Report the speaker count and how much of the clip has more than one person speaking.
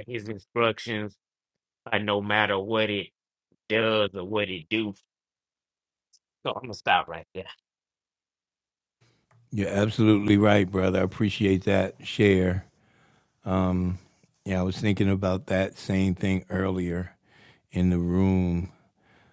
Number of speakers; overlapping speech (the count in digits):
2, no overlap